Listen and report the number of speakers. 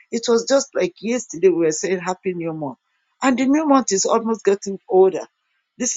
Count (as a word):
one